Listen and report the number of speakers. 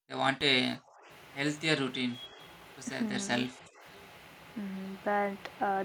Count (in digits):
2